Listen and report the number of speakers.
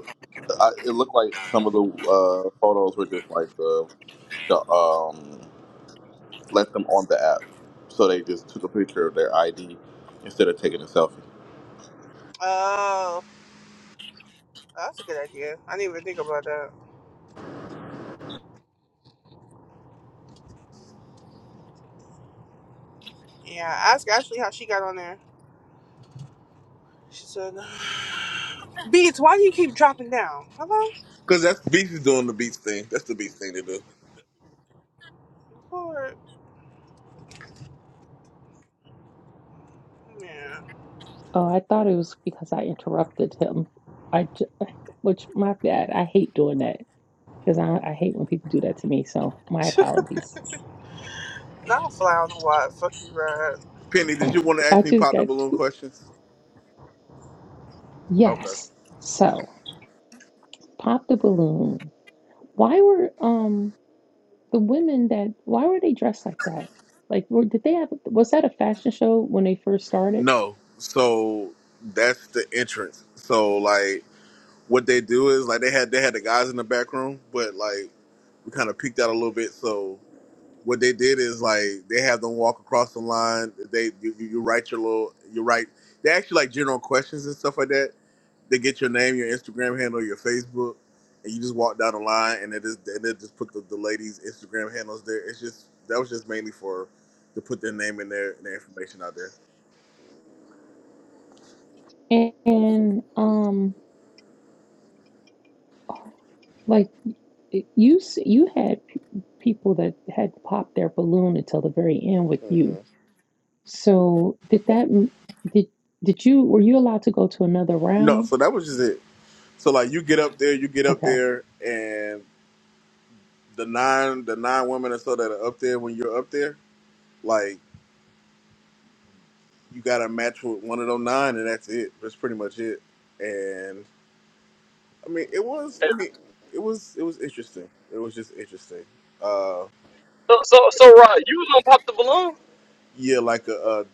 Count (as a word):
five